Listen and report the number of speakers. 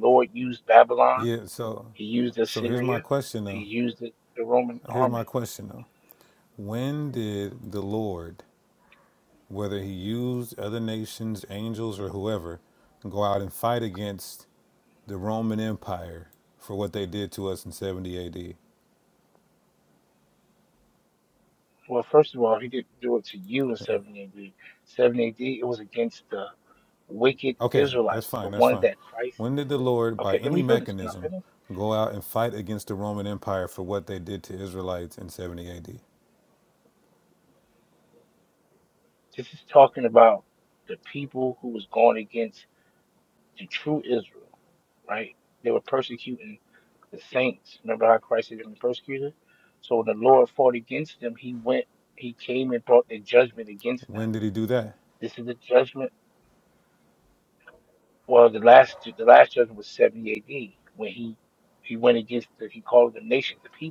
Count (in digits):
2